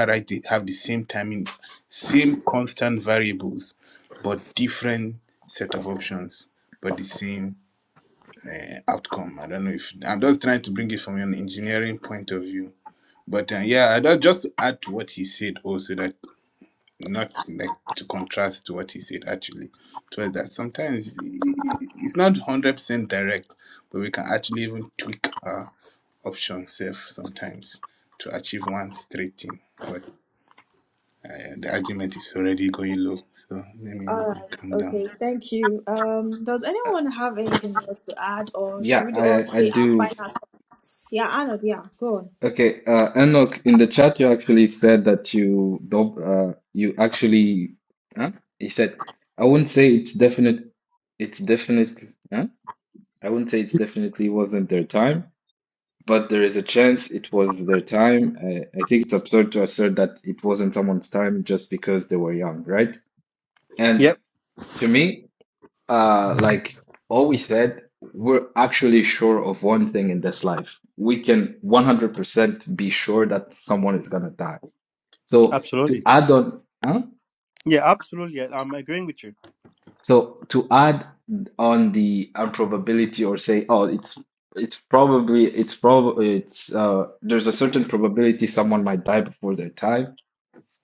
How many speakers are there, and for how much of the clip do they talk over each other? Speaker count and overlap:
4, about 3%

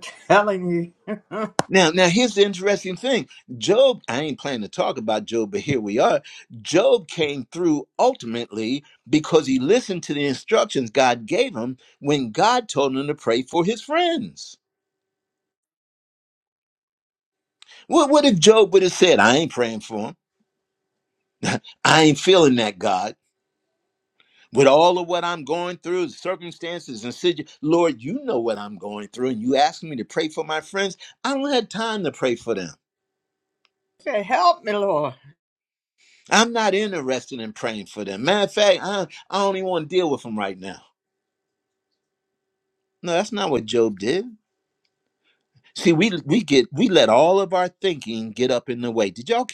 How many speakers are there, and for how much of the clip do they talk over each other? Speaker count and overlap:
2, no overlap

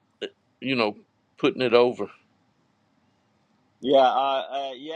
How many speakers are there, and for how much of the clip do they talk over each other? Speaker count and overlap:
2, no overlap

